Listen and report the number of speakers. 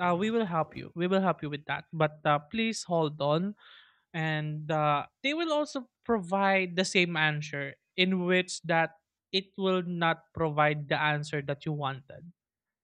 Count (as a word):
one